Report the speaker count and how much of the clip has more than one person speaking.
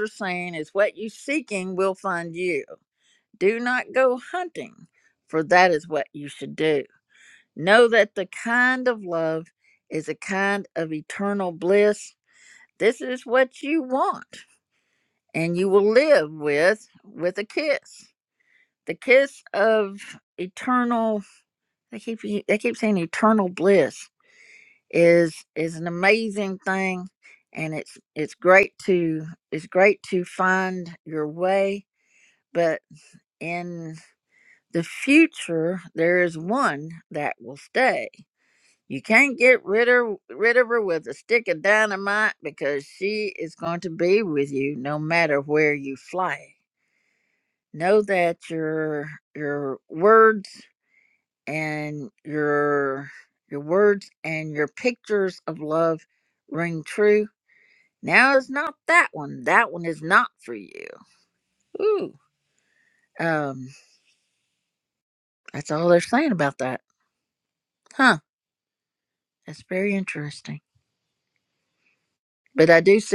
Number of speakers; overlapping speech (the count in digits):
1, no overlap